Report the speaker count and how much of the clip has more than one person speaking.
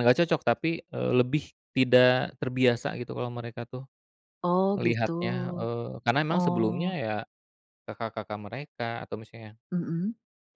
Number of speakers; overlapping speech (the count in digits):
2, about 10%